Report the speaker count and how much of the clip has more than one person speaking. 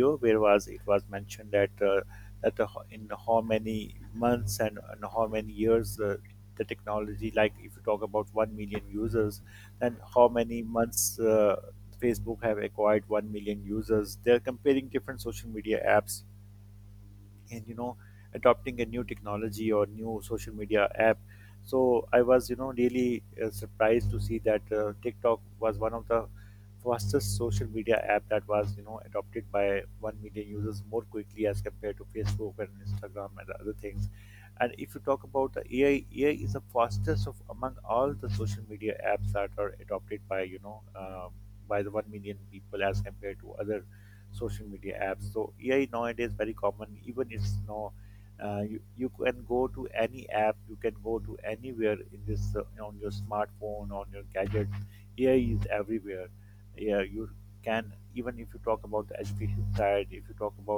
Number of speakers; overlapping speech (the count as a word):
one, no overlap